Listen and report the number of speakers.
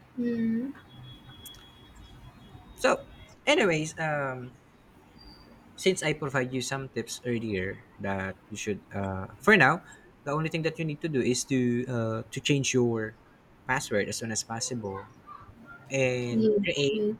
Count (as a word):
two